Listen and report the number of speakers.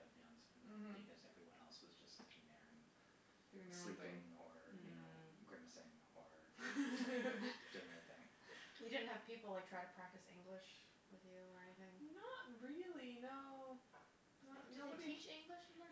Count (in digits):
3